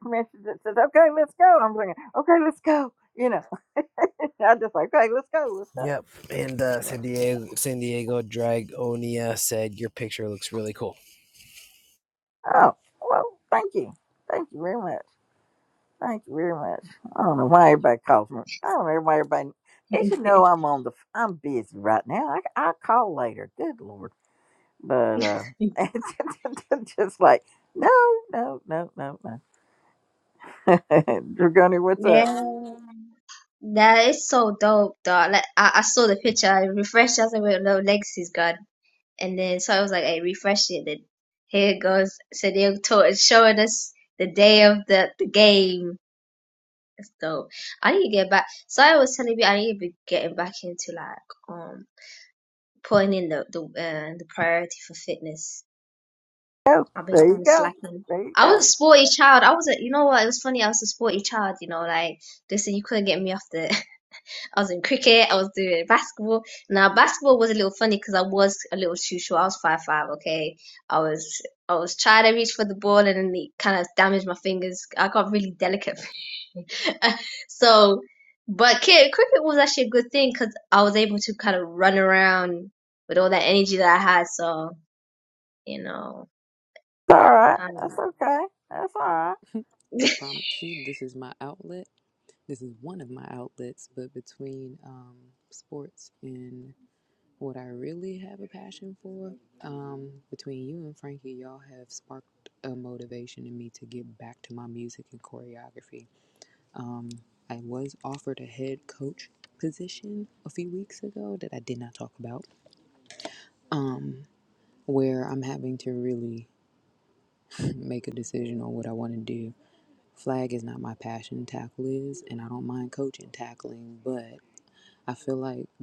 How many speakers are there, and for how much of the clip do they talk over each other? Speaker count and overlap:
4, about 2%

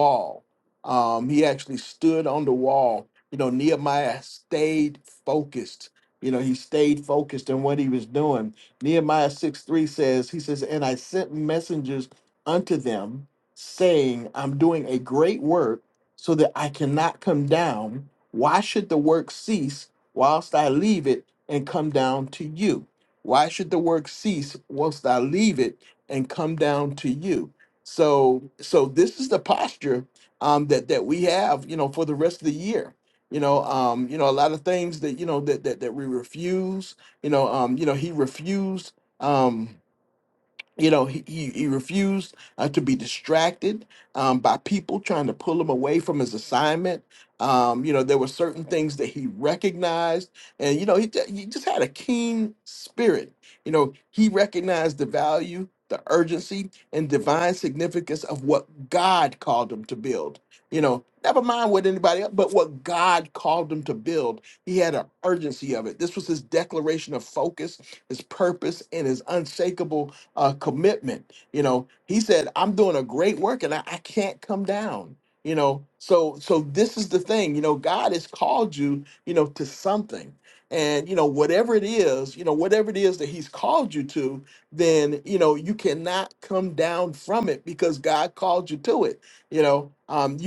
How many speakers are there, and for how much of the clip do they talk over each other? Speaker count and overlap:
1, no overlap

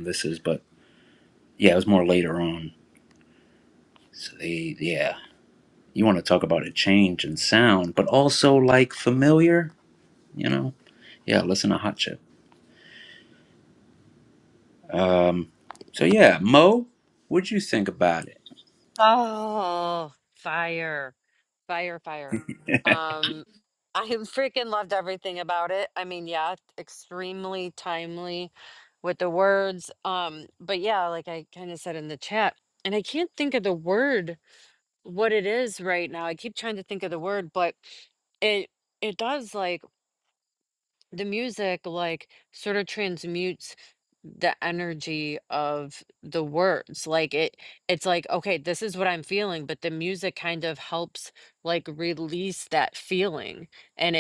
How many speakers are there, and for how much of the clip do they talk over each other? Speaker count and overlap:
2, no overlap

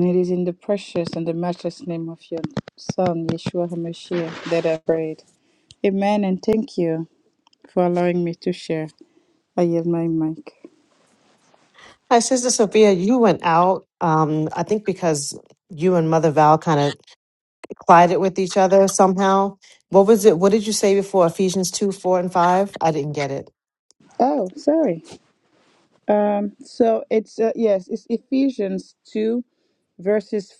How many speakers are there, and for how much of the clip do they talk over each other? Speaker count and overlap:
2, no overlap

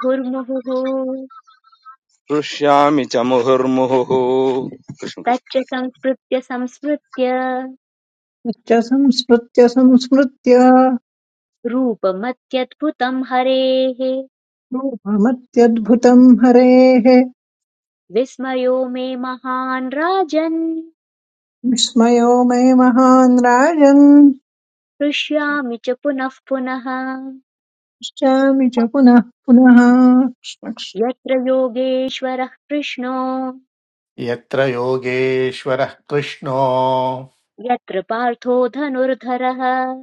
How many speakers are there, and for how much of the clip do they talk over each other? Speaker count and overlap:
4, under 1%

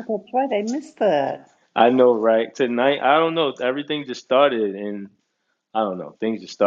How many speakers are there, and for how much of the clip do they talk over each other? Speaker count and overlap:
2, no overlap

